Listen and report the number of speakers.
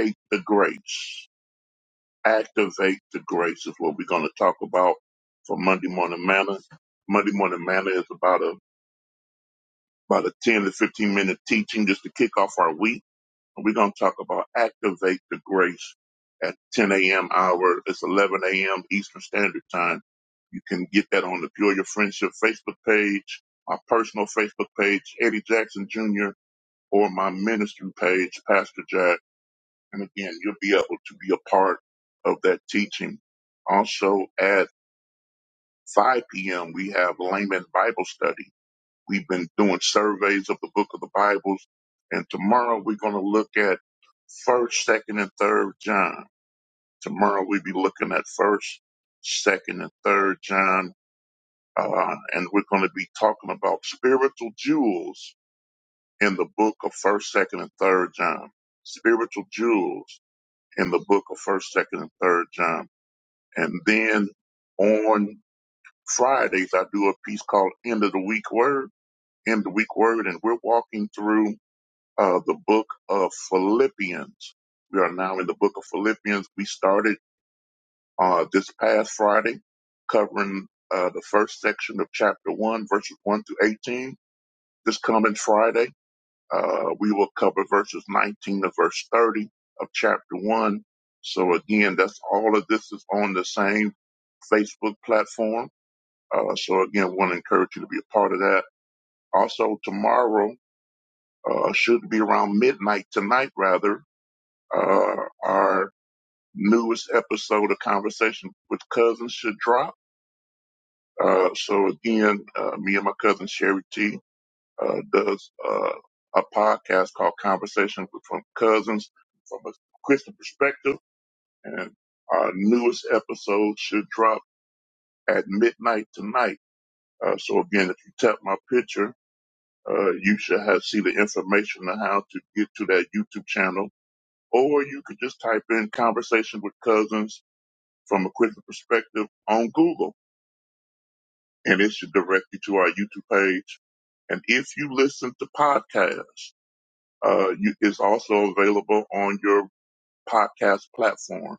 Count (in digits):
1